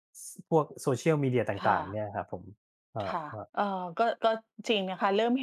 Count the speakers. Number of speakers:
two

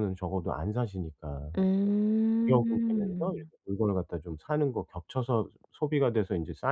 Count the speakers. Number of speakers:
two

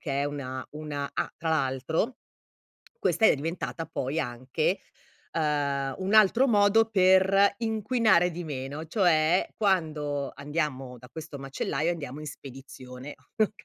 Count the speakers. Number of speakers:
one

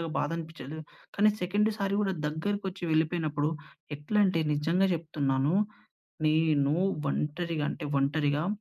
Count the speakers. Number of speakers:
one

